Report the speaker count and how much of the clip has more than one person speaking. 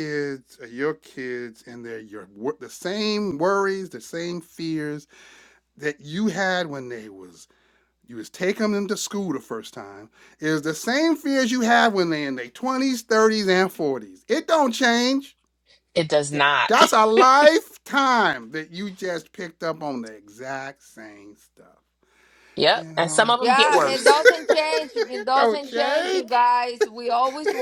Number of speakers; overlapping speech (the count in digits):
3, about 13%